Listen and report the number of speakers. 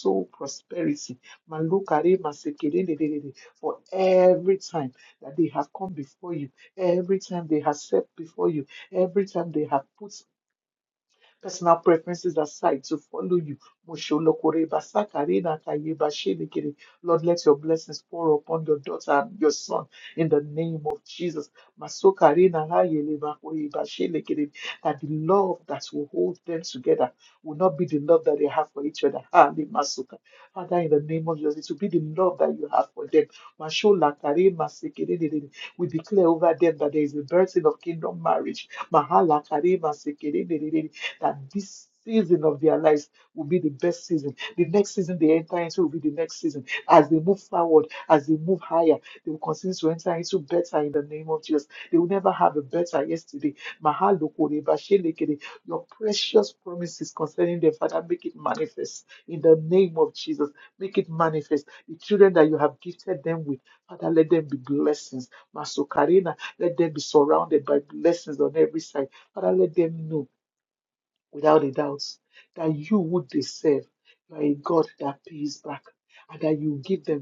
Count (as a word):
one